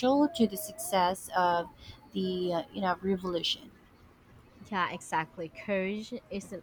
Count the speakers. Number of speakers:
2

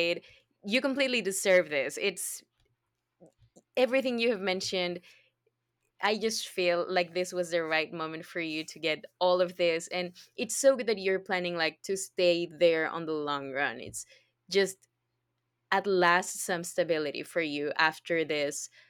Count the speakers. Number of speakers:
1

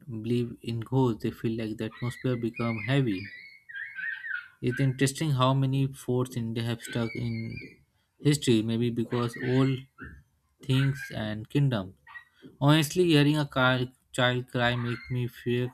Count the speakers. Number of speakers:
1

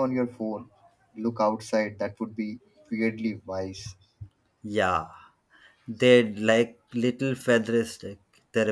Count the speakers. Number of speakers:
2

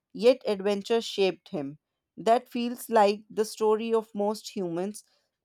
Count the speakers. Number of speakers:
1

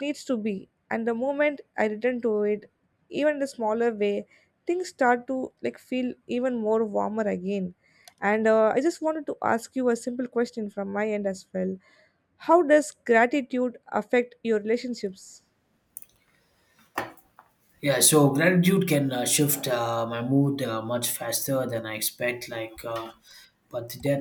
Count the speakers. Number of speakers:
2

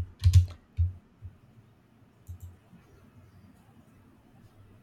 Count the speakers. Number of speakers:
0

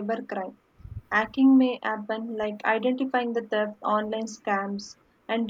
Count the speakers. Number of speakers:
1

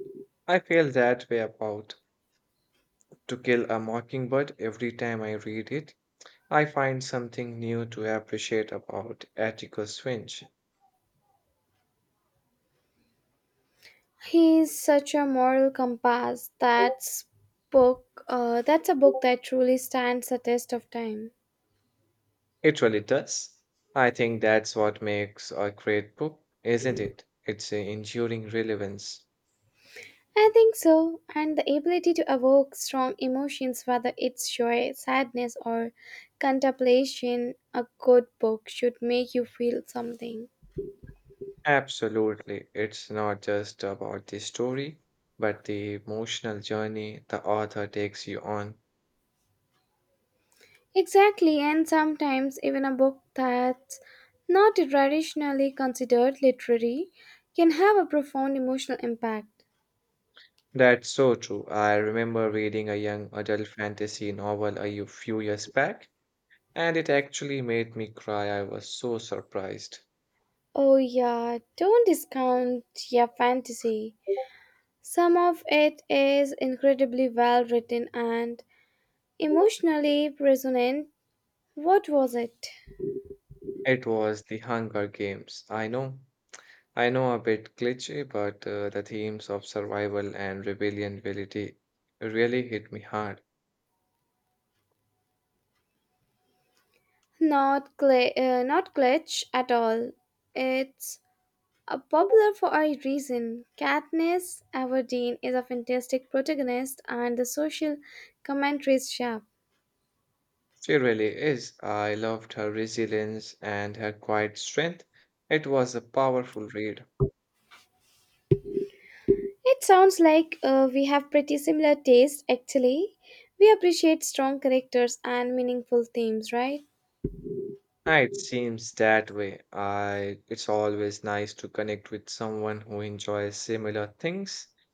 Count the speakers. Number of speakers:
2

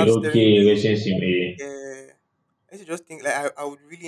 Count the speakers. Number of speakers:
2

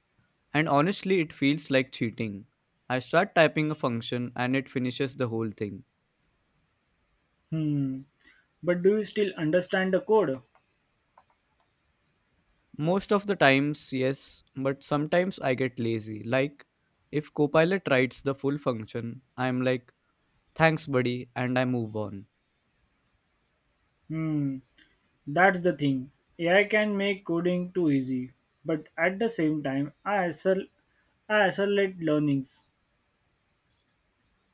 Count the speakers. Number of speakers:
2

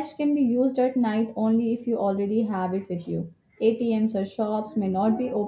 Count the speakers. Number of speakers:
1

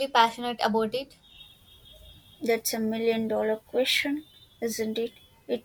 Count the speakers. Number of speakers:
2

